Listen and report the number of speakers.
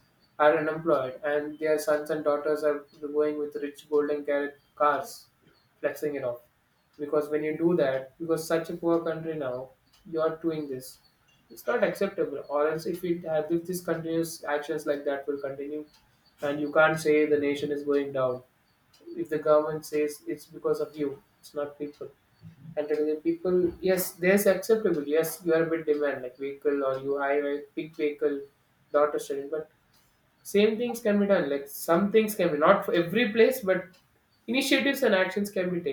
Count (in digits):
1